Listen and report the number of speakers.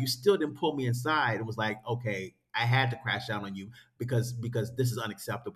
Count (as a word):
one